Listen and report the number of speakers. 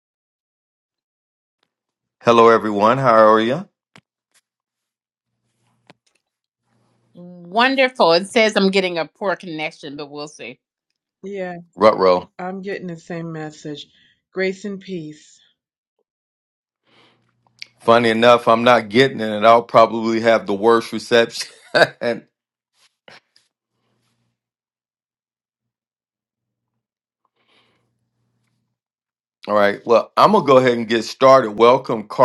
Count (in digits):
3